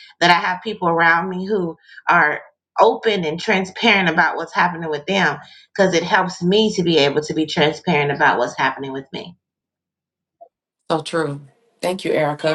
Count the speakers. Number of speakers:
2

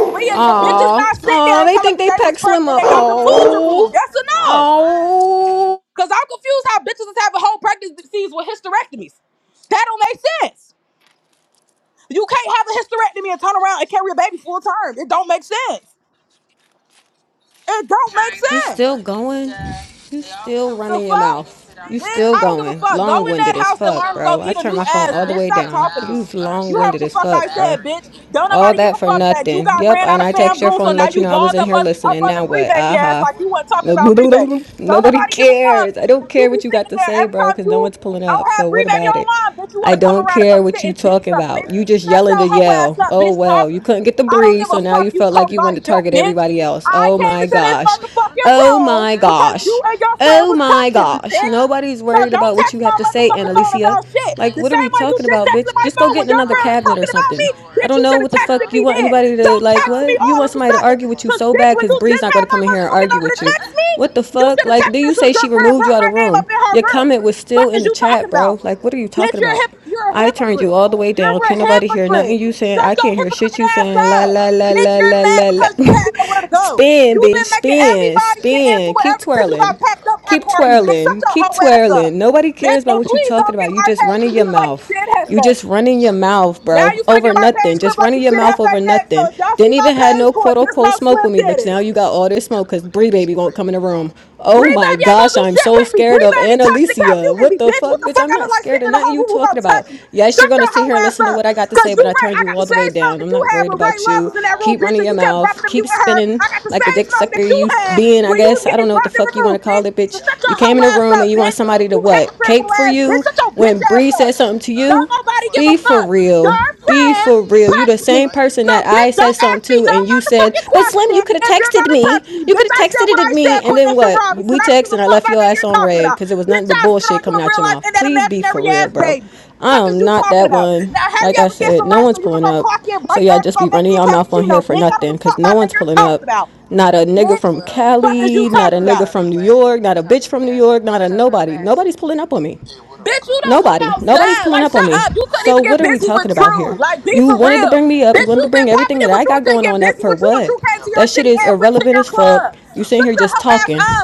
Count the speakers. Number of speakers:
2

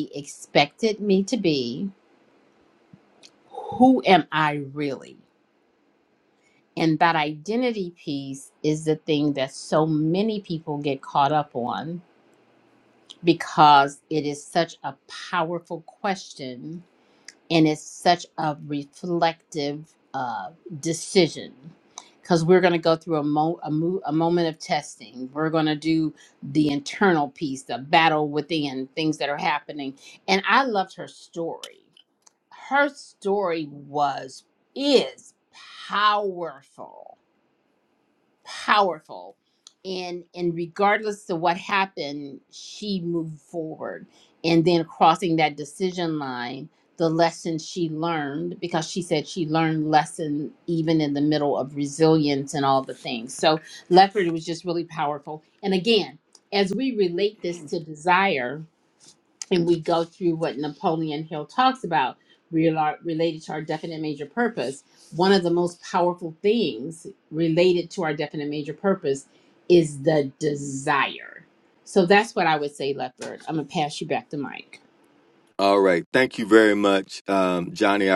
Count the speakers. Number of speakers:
2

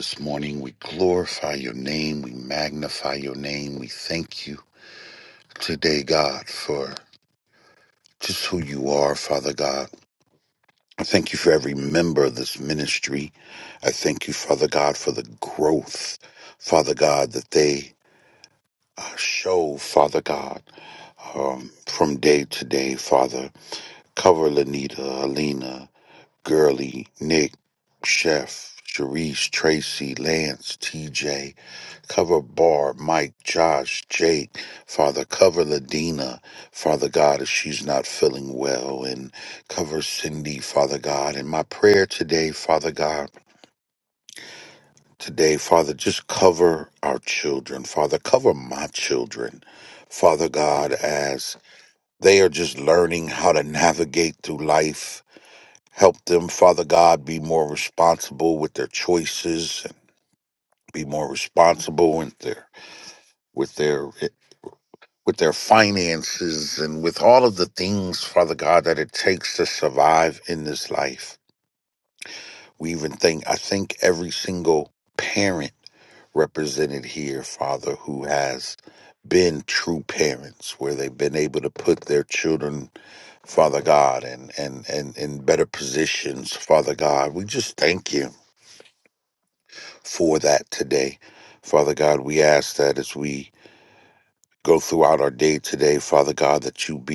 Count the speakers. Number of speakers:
1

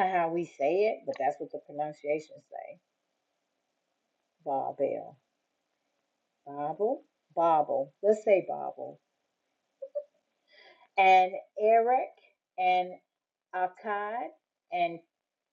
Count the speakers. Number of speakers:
1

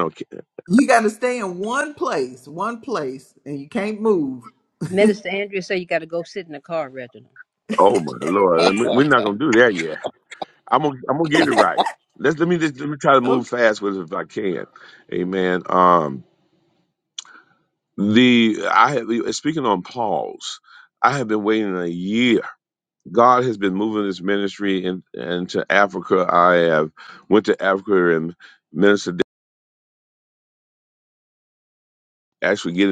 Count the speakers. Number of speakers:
3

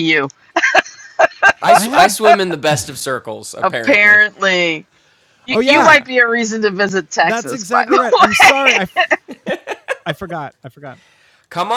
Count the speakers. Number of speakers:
3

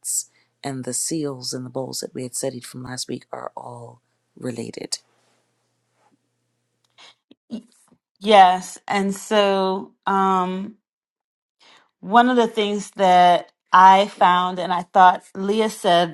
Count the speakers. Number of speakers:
2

